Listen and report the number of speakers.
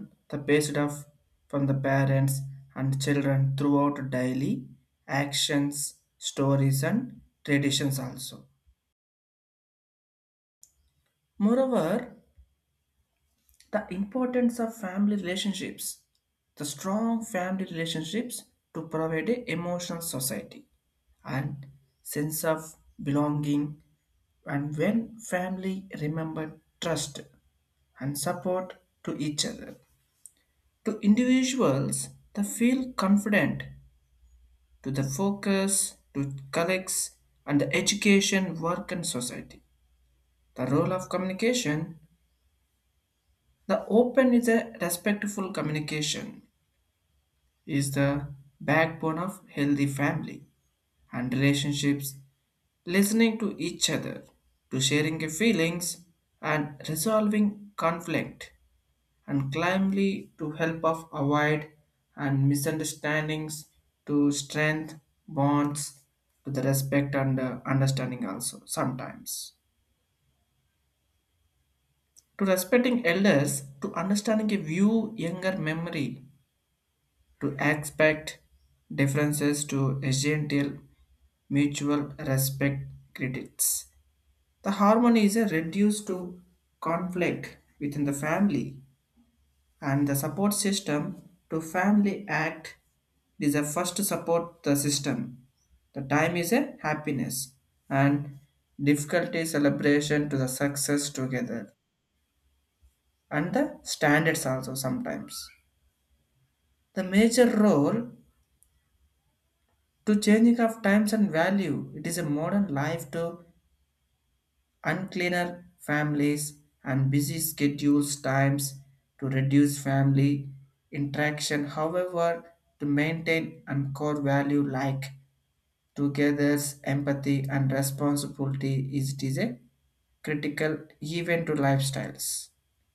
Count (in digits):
1